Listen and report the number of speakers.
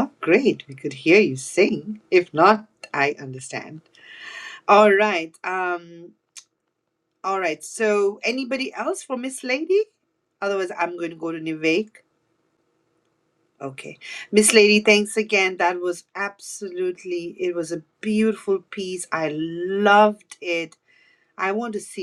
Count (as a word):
one